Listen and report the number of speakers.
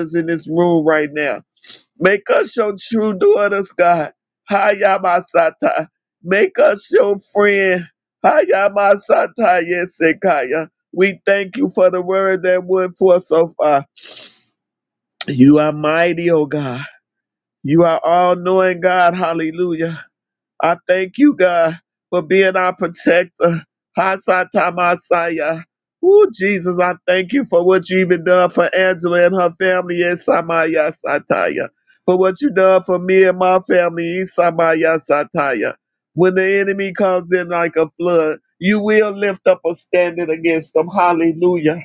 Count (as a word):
one